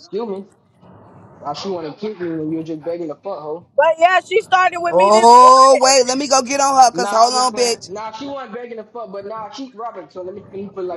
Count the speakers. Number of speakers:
3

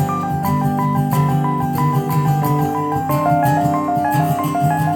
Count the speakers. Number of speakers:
0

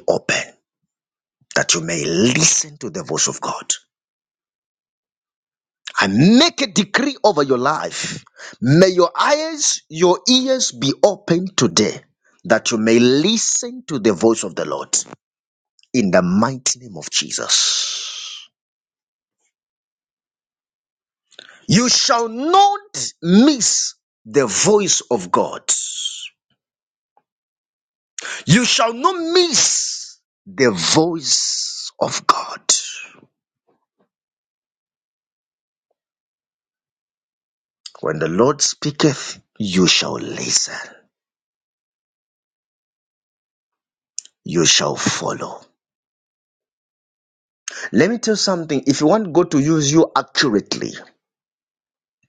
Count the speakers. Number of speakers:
1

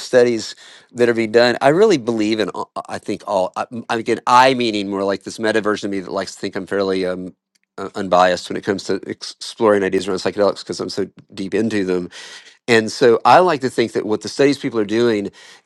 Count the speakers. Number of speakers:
1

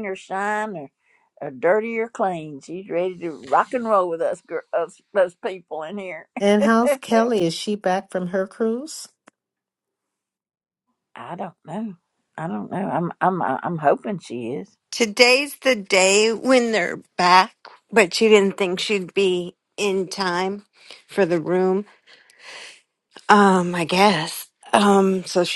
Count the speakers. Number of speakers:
3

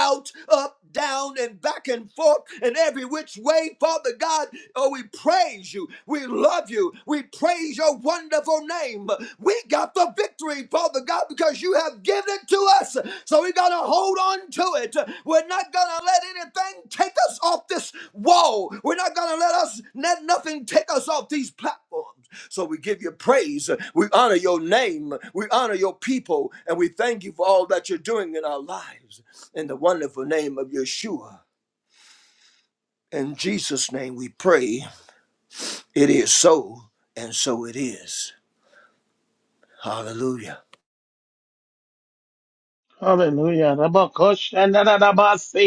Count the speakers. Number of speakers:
2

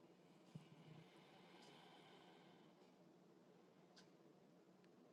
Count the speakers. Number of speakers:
0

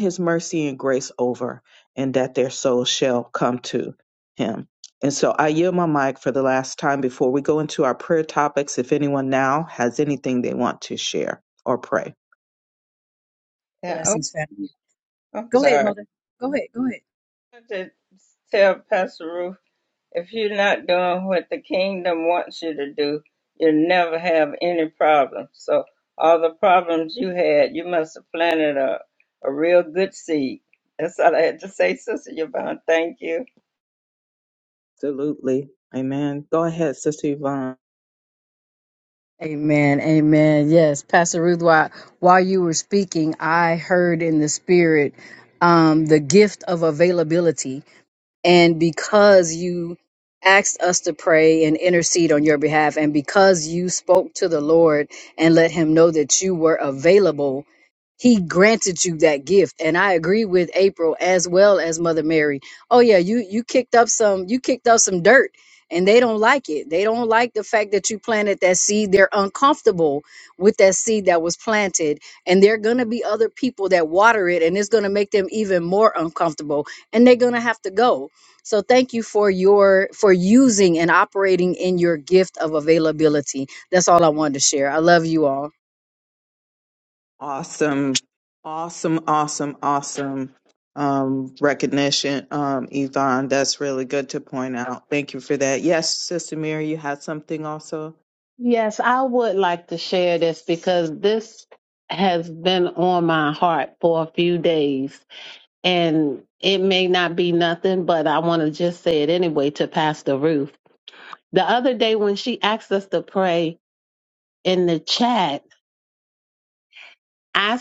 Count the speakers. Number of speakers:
4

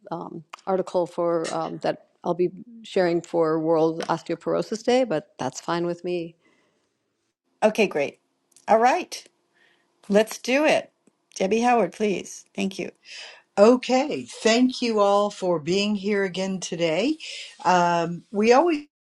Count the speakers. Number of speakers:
3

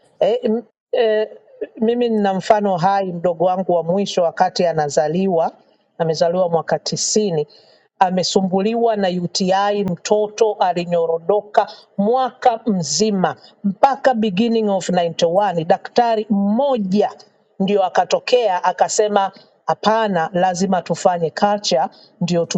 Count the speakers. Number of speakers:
1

